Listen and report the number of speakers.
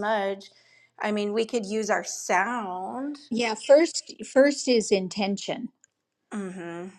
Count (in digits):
2